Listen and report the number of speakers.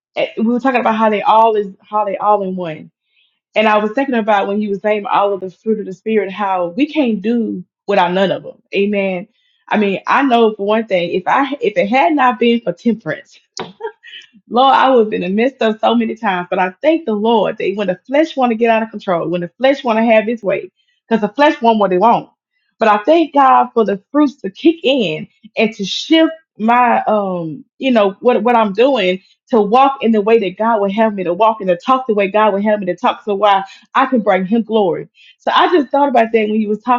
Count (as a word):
one